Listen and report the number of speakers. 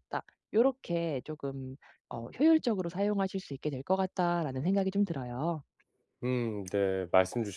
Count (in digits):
2